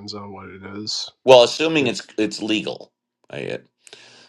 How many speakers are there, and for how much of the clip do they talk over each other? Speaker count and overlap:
two, no overlap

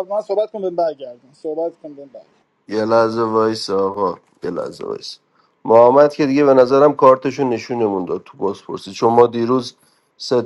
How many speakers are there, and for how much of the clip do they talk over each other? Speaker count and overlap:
two, no overlap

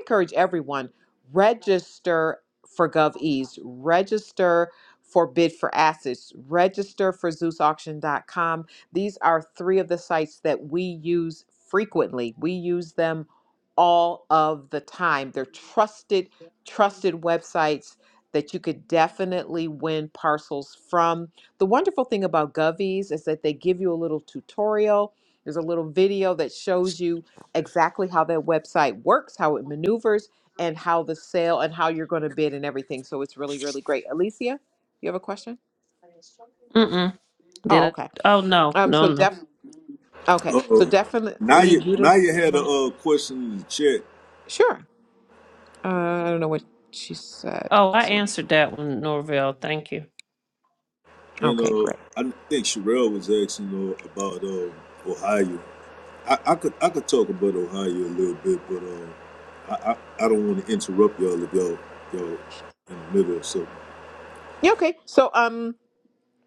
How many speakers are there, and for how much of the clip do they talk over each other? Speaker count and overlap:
three, about 5%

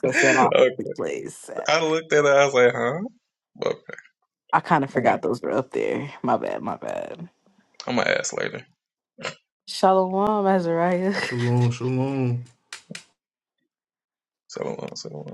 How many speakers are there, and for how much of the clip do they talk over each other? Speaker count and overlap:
three, about 4%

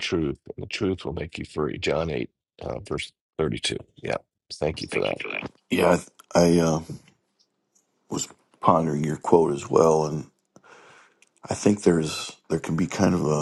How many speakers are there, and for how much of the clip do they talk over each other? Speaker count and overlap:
two, no overlap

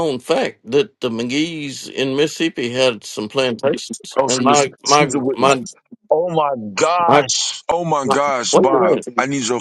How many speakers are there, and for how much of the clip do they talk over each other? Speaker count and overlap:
two, about 25%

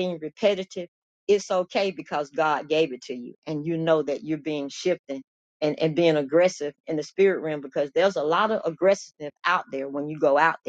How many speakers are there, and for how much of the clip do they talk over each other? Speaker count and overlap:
one, no overlap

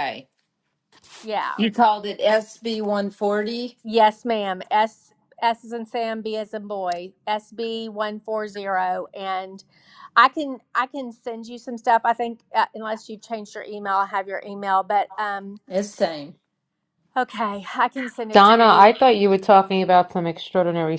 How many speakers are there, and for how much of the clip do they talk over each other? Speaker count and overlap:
three, about 4%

